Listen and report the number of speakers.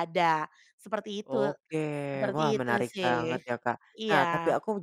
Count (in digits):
2